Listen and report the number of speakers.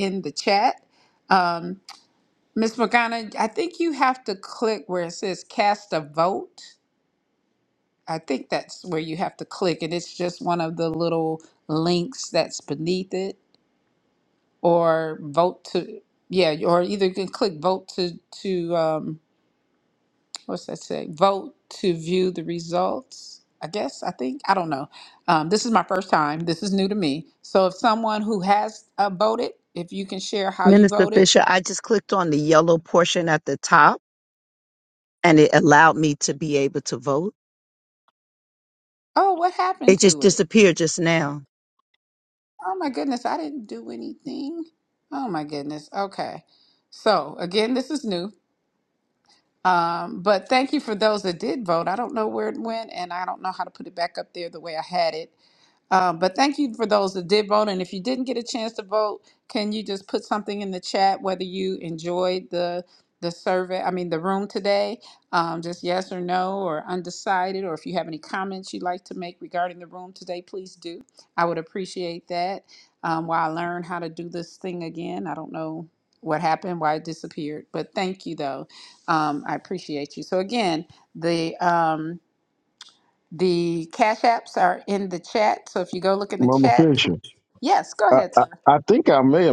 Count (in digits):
3